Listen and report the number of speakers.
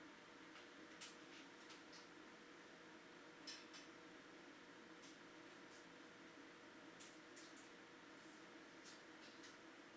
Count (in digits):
0